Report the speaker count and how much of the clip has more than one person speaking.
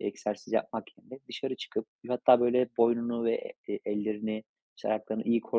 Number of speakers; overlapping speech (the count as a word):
one, no overlap